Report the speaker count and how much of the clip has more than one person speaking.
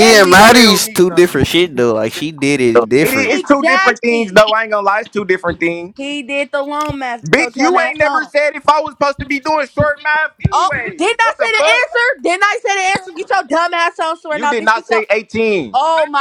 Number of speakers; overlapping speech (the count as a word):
three, about 35%